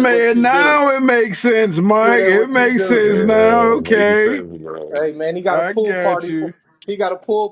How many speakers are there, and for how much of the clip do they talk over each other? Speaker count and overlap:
3, about 58%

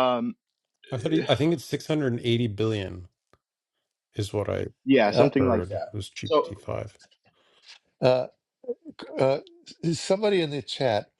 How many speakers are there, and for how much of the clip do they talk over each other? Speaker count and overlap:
3, about 9%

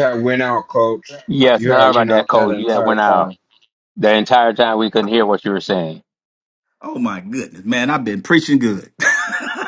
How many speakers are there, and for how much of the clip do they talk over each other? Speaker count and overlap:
3, about 18%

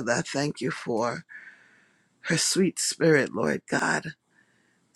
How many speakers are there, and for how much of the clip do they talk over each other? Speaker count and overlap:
1, no overlap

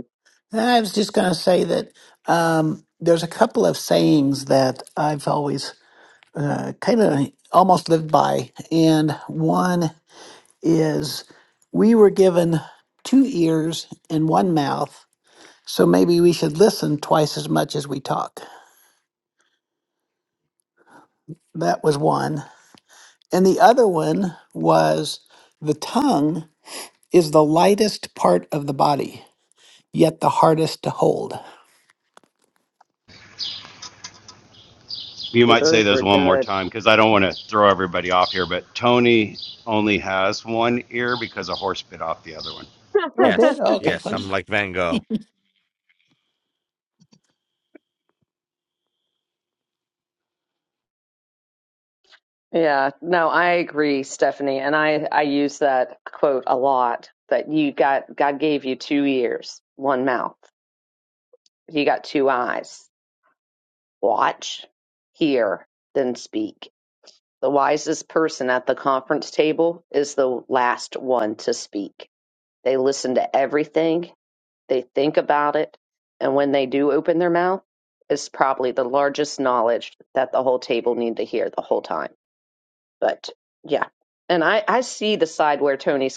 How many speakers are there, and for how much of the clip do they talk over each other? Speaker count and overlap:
4, about 2%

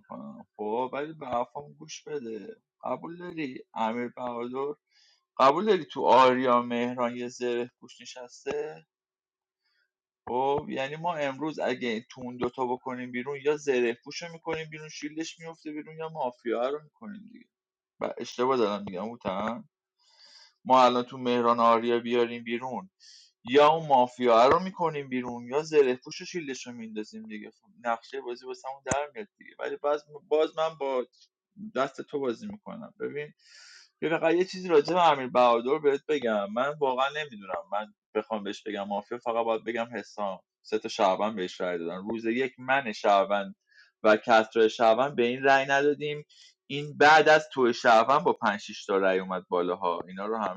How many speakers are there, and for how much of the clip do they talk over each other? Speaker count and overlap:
1, no overlap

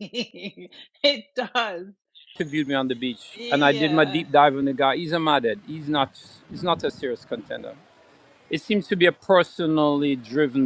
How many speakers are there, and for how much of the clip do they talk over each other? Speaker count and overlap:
2, about 8%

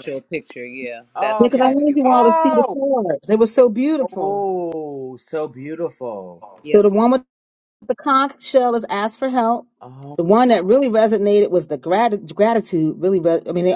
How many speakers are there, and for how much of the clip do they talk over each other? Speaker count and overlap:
3, about 15%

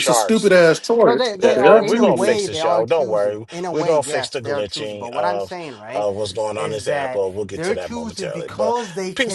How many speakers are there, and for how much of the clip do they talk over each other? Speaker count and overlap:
3, about 77%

